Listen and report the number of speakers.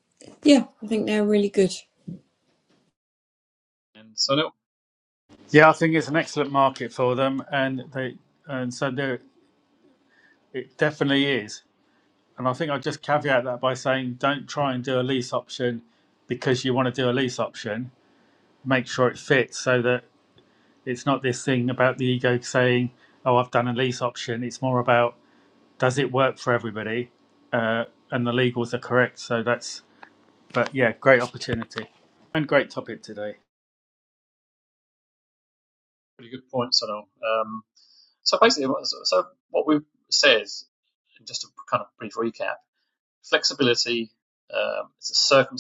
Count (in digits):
3